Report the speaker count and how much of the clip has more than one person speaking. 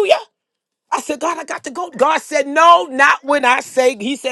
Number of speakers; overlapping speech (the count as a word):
one, no overlap